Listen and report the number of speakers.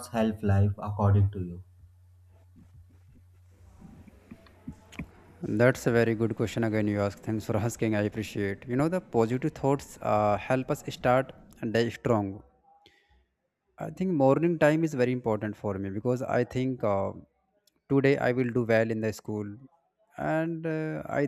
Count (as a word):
two